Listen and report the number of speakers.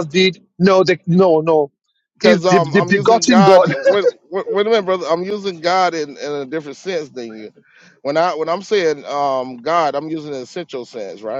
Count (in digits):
2